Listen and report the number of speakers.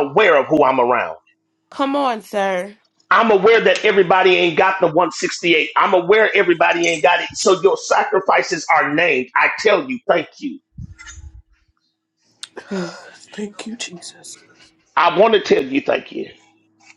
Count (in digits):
3